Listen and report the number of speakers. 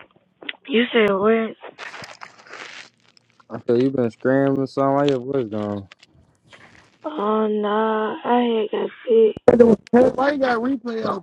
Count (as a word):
three